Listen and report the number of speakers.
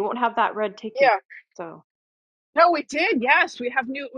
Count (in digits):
2